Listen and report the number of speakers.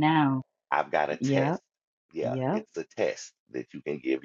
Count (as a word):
two